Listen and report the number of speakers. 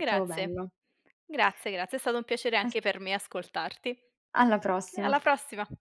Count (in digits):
2